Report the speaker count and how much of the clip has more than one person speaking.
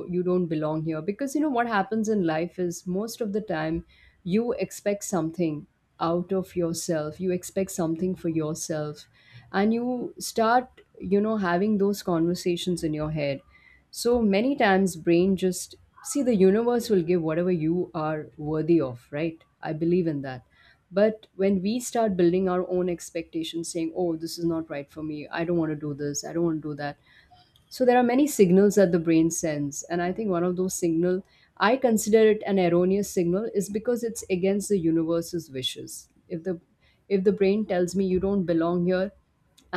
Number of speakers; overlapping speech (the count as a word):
one, no overlap